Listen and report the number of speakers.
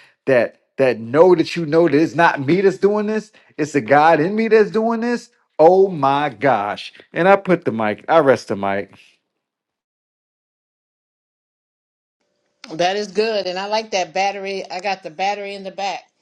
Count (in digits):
2